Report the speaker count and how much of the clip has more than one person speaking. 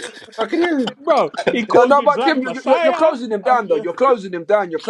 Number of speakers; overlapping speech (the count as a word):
two, about 43%